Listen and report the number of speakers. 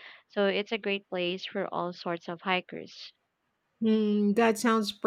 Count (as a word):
two